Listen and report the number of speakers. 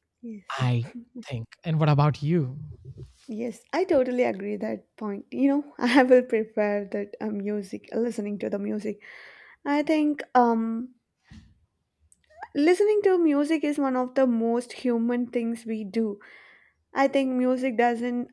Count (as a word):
two